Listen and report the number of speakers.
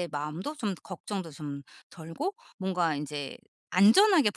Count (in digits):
1